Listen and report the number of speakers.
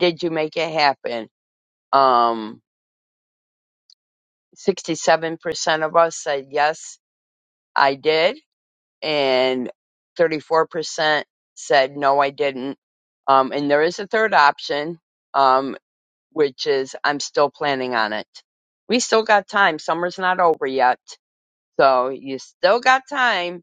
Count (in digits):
1